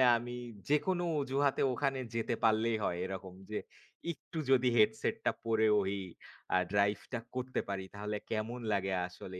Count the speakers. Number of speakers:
1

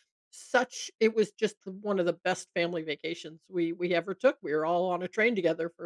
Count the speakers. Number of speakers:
1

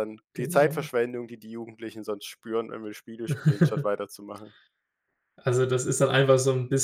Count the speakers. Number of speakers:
2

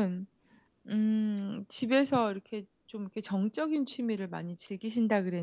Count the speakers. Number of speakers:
1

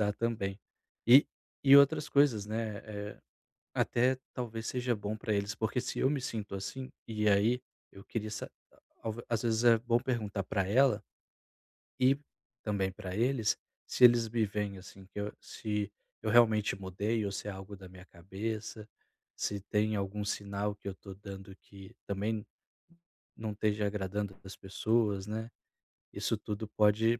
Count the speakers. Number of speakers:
1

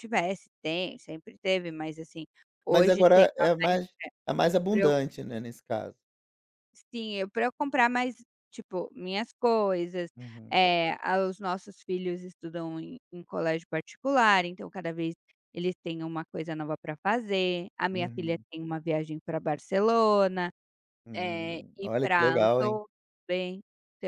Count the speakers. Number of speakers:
2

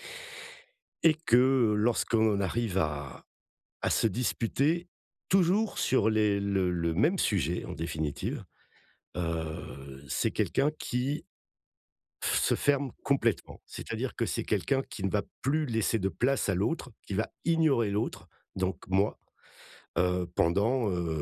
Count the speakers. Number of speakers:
1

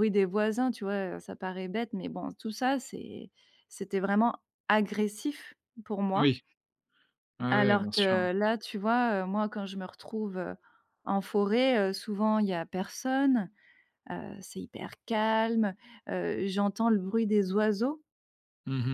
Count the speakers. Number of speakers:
2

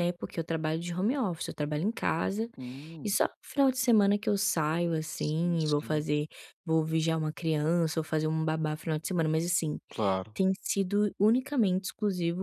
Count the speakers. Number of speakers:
2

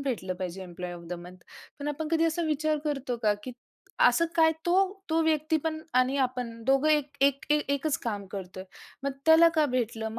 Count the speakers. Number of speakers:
1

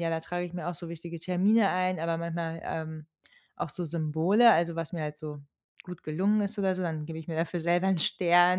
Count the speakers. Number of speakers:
1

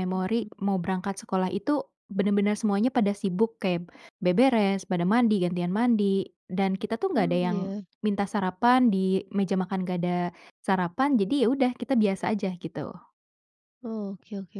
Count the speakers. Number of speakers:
2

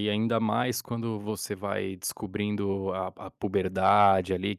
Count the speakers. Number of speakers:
1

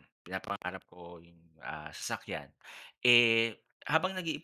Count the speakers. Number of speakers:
1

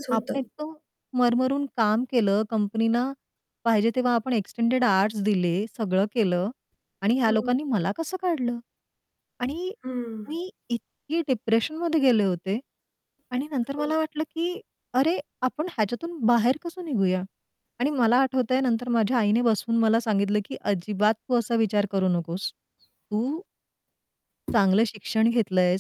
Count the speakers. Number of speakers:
2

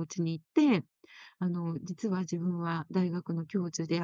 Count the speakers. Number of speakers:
1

